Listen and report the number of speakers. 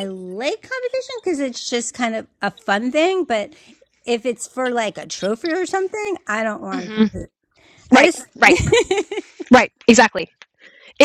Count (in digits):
2